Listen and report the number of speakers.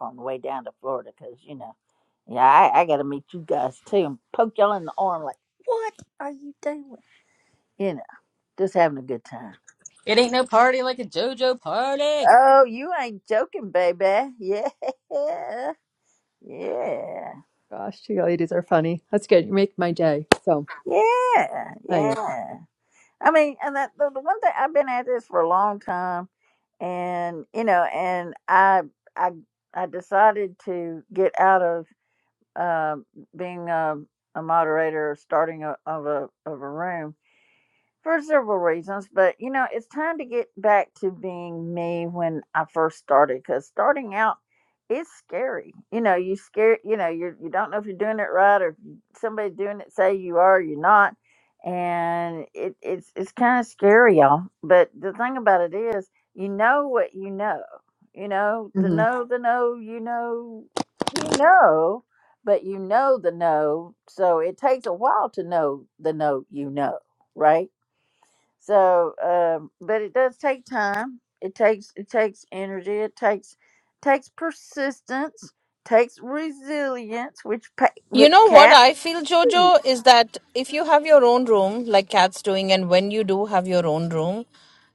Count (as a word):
four